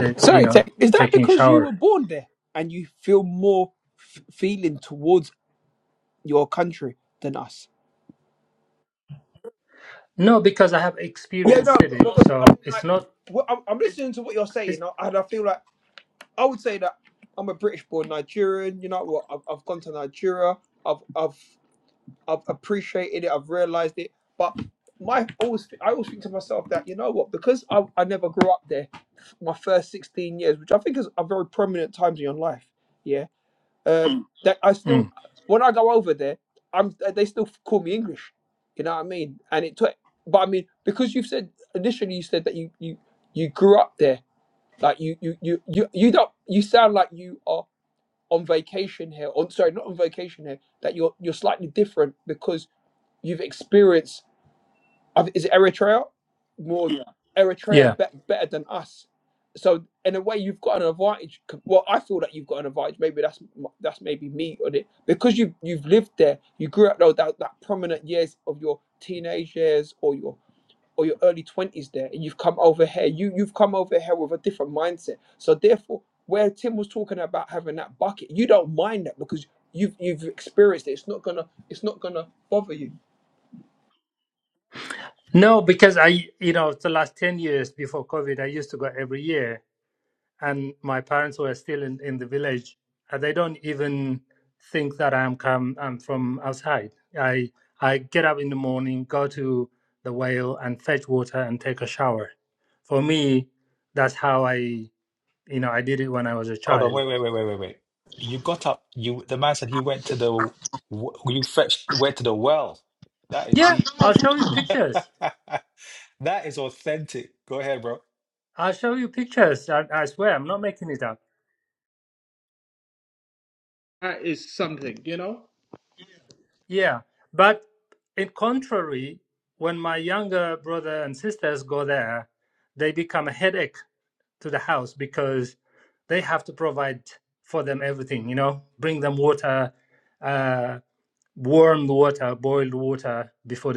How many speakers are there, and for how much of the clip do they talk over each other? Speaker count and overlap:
4, about 3%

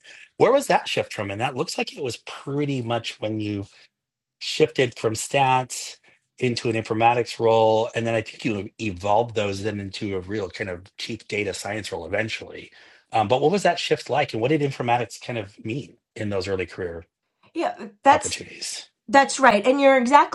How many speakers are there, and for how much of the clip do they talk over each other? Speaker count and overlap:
2, about 1%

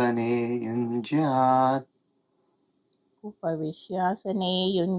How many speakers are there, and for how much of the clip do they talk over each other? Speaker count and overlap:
2, no overlap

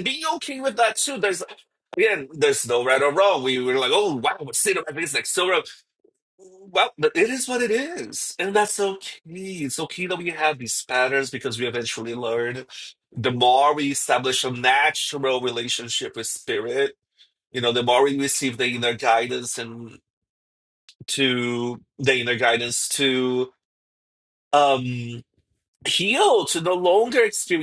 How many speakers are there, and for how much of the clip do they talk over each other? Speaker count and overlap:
1, no overlap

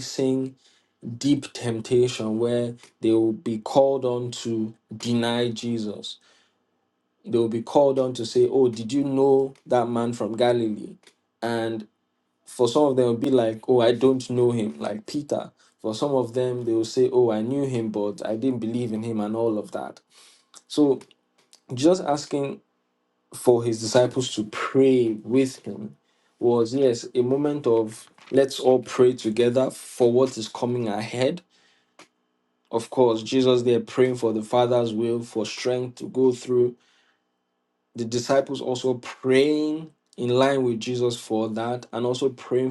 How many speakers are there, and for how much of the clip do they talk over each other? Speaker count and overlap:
1, no overlap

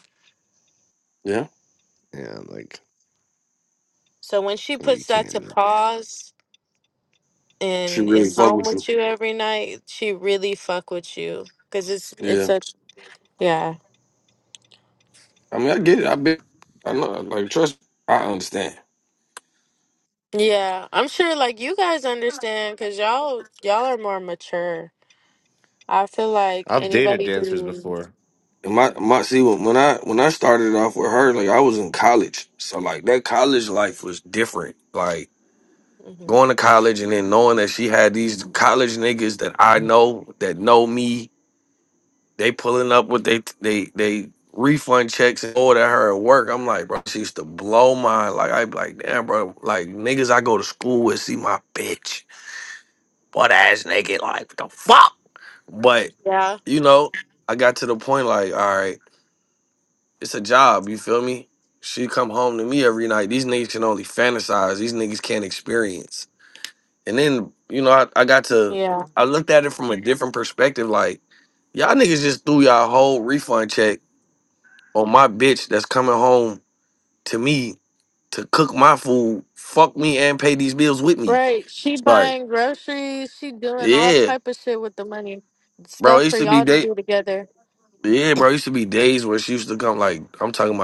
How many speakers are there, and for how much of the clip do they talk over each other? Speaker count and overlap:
3, about 5%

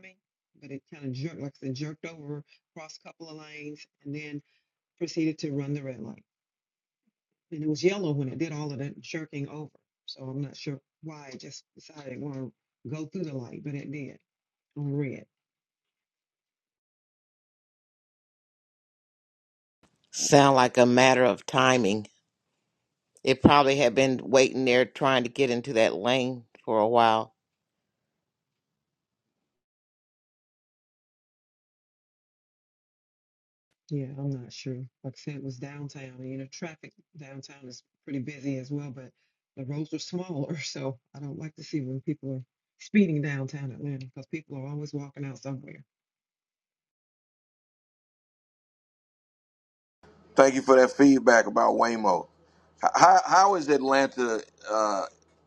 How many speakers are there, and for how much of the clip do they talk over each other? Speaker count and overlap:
3, no overlap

